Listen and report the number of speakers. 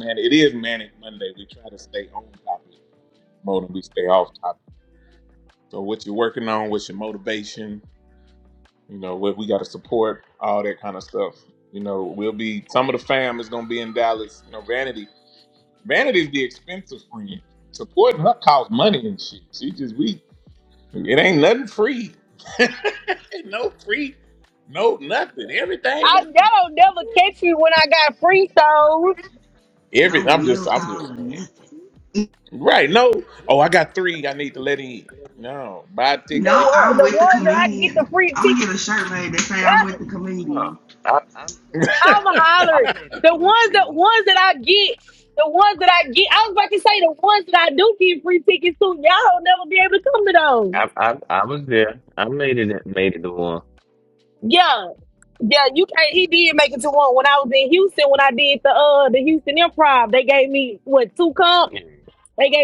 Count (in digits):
4